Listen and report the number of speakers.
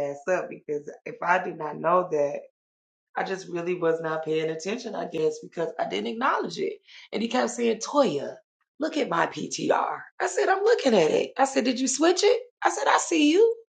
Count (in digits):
1